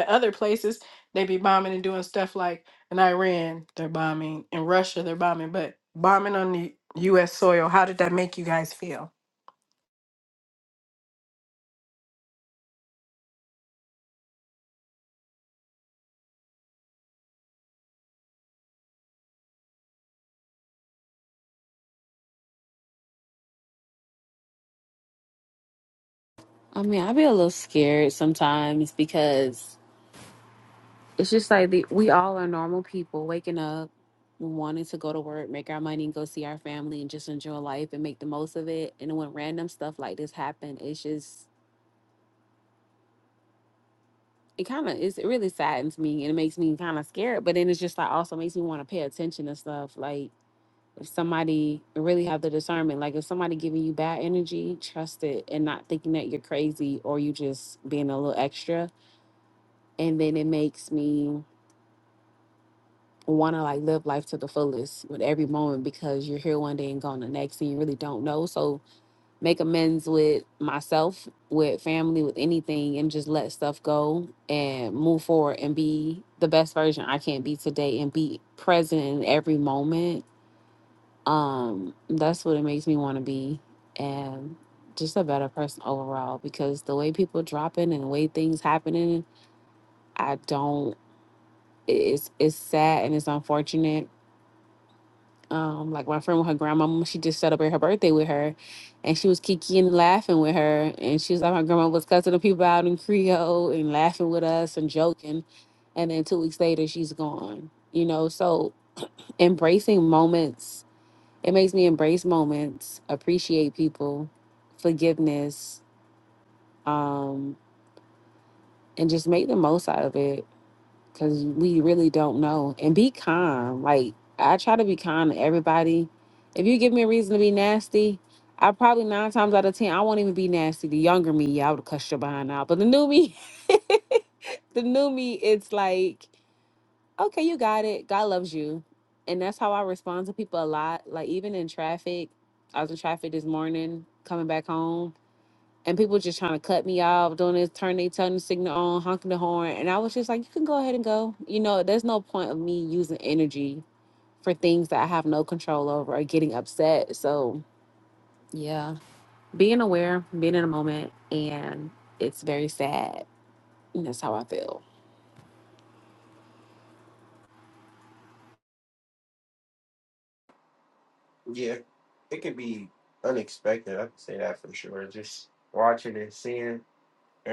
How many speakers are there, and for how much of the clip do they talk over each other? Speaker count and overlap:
three, no overlap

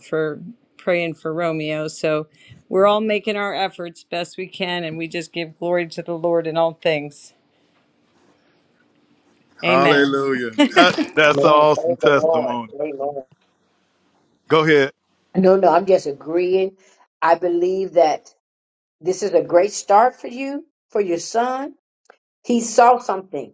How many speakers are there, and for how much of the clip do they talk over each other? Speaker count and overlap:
three, about 8%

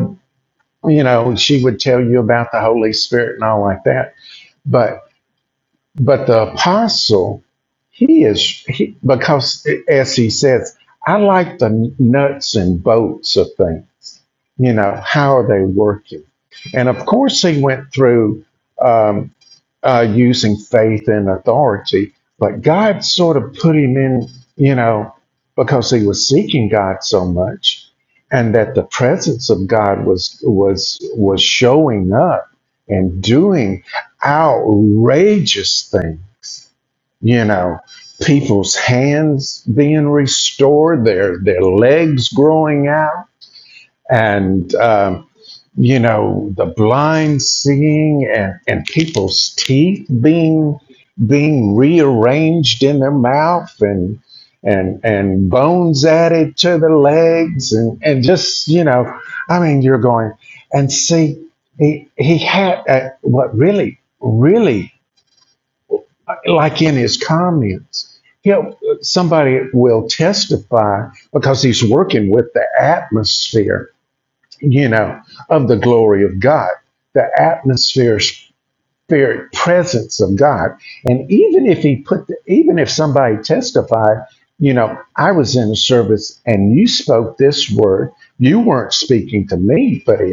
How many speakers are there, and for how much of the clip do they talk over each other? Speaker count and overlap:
one, no overlap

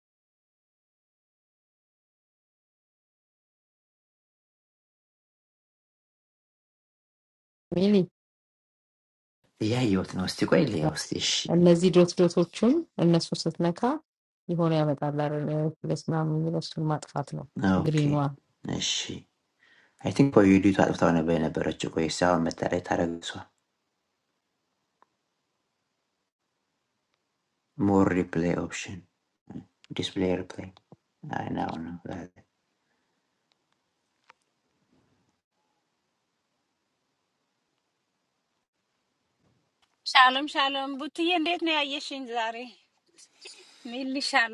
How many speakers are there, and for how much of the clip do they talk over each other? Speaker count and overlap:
three, about 1%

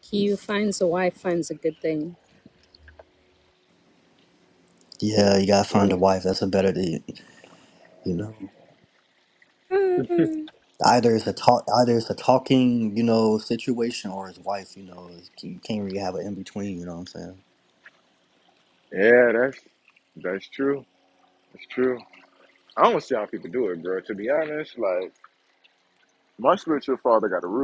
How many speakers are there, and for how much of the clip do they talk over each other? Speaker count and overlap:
three, about 3%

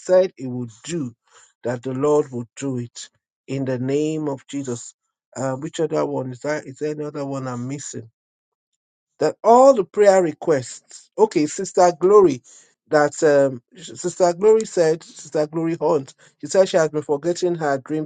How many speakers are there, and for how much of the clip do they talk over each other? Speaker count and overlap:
one, no overlap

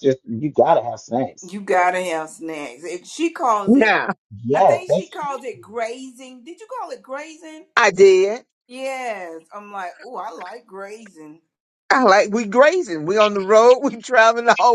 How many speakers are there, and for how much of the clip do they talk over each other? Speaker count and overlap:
three, about 6%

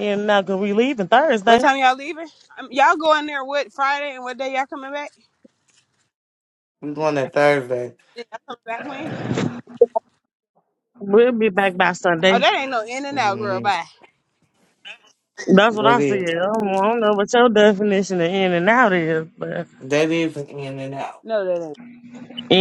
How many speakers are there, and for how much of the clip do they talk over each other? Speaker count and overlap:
three, about 6%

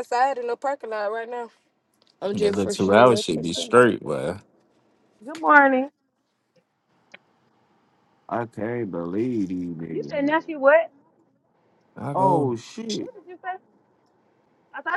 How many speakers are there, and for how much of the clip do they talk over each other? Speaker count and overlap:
four, about 15%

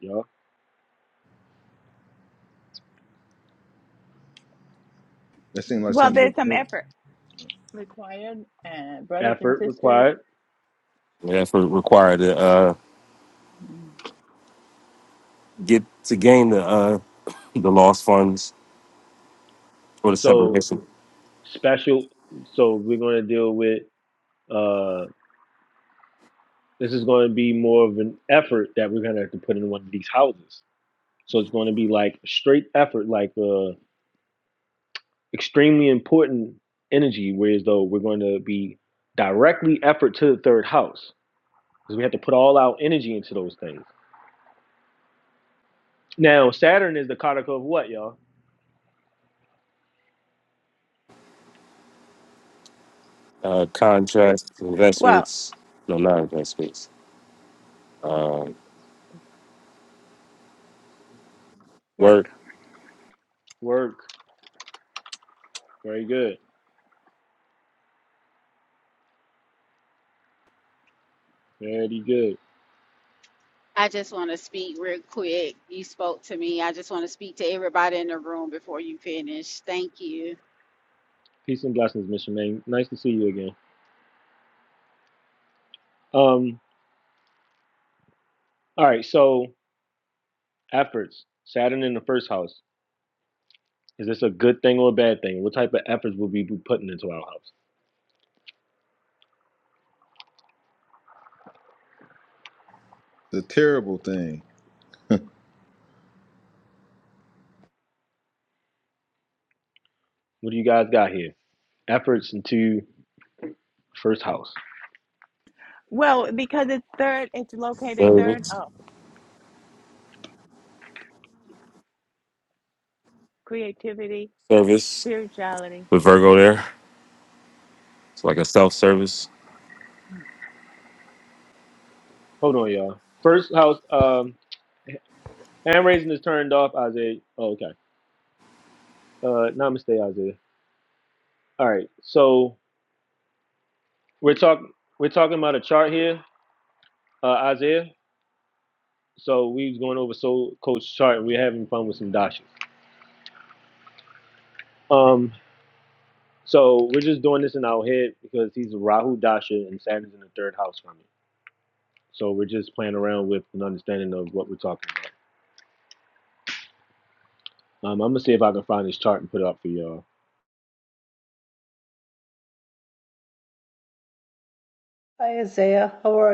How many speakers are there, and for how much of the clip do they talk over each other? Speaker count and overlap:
six, about 2%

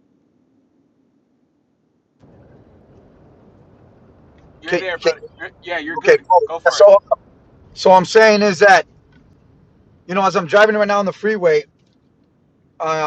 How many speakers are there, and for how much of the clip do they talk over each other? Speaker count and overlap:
two, about 11%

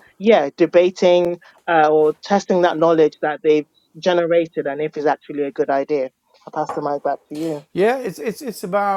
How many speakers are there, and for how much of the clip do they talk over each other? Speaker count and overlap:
two, no overlap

